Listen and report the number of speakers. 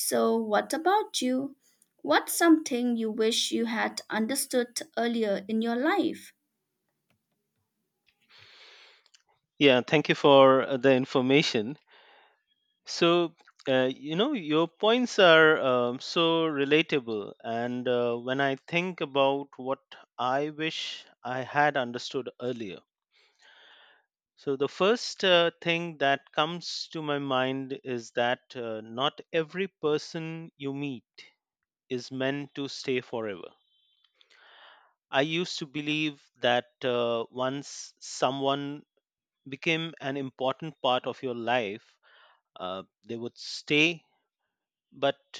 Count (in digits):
2